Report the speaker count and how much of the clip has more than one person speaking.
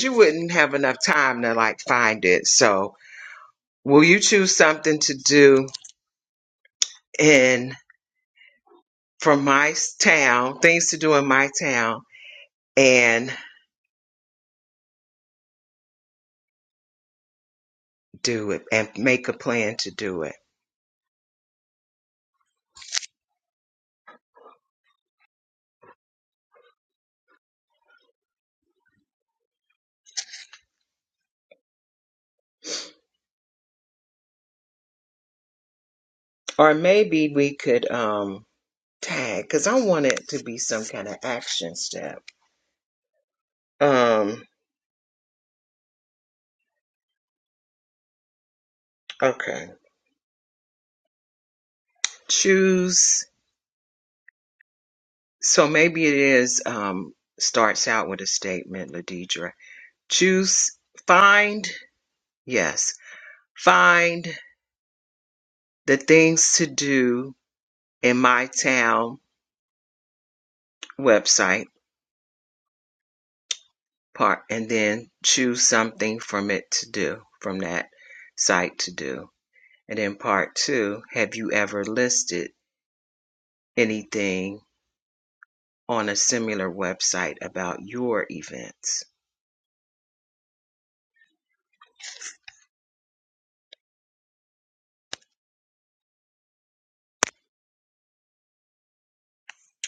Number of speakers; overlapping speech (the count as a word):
one, no overlap